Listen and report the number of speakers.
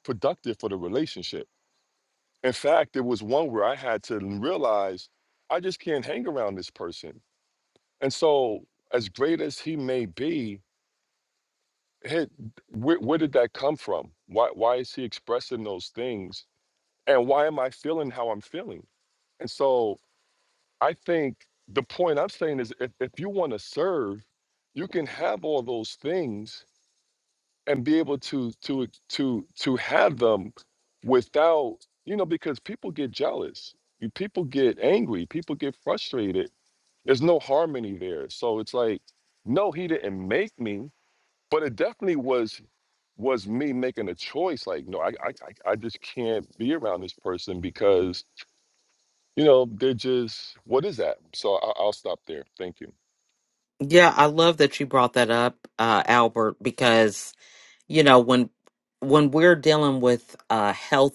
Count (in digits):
2